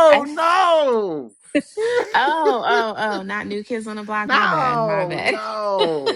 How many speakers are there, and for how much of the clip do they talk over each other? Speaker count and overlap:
two, about 24%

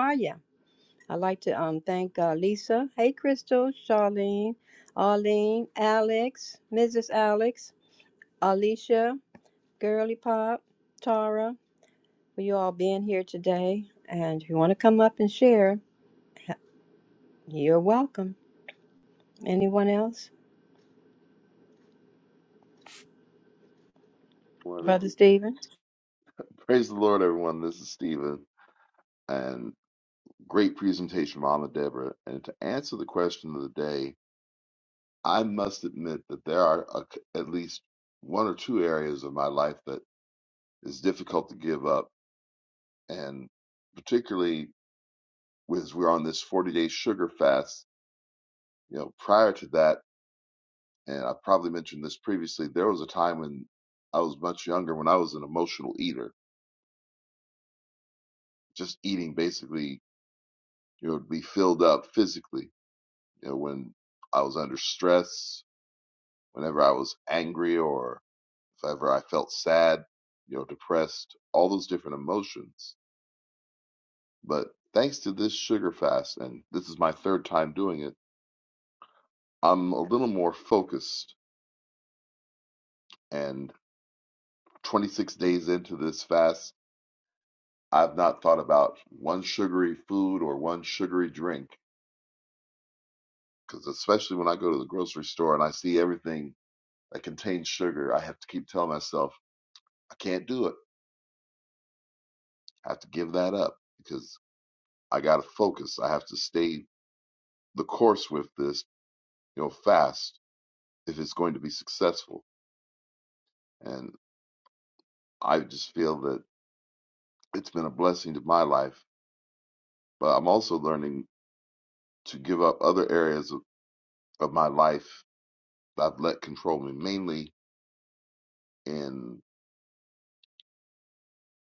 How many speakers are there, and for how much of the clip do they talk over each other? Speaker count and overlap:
two, under 1%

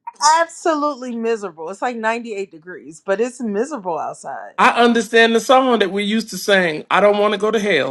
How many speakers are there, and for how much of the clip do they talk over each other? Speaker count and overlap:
two, no overlap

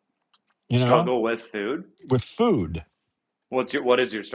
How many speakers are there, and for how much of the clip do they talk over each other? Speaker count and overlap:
two, about 7%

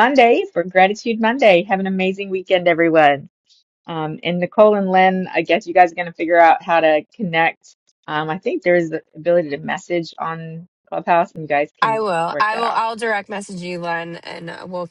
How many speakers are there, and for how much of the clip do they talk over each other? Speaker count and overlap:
two, about 4%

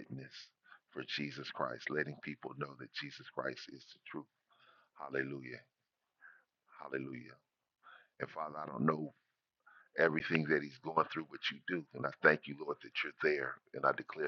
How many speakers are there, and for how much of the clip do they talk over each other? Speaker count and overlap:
one, no overlap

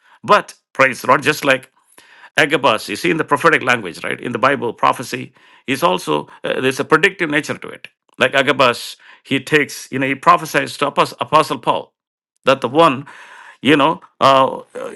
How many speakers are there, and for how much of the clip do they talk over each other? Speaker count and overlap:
one, no overlap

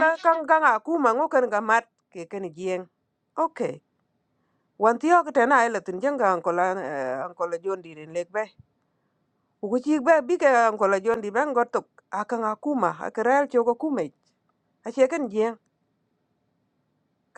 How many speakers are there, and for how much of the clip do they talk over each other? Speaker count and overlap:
one, no overlap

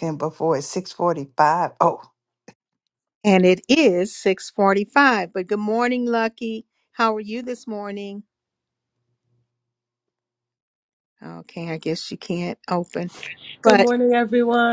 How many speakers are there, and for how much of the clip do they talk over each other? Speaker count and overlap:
three, about 2%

